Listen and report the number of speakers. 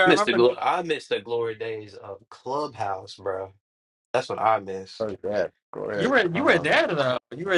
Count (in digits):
3